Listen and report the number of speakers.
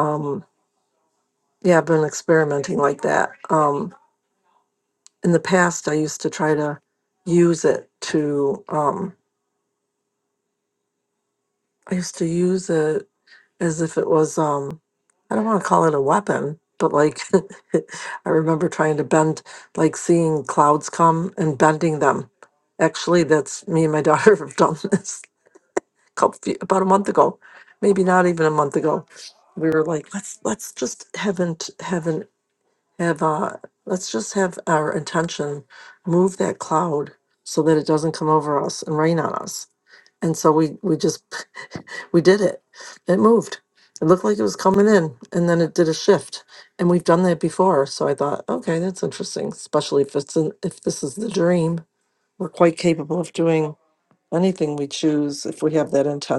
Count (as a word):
one